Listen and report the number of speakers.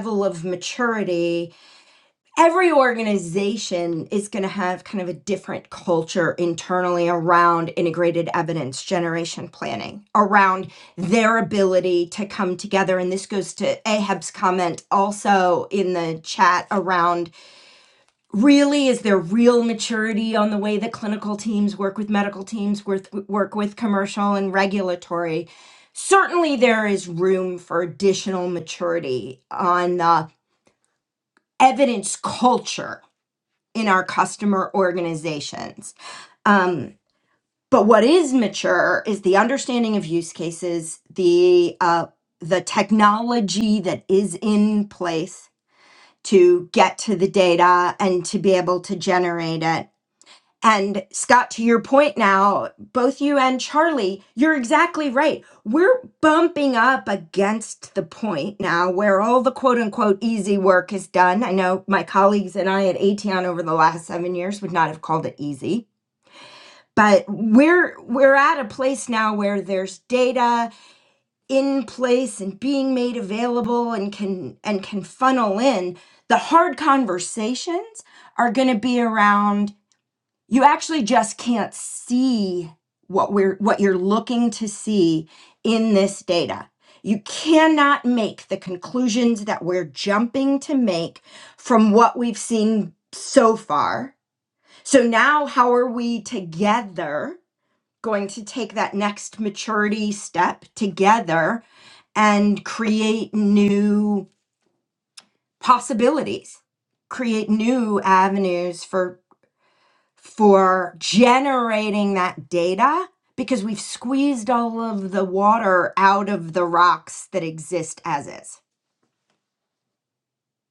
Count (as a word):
one